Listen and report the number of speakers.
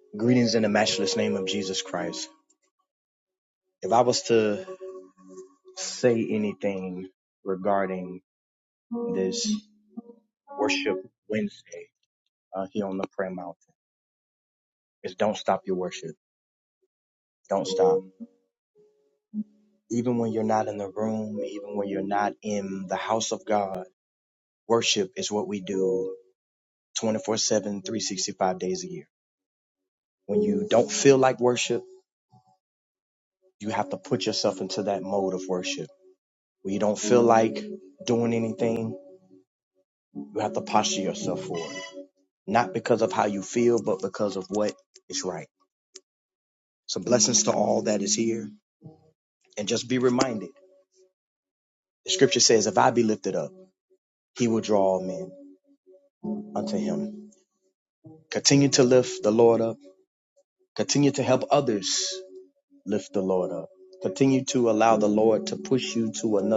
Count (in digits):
1